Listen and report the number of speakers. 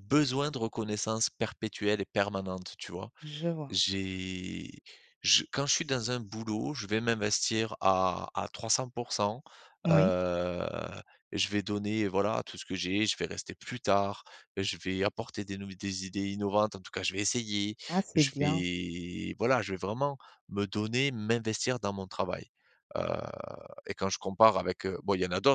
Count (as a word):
two